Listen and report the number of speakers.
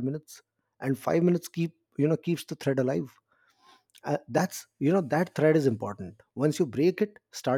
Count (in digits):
1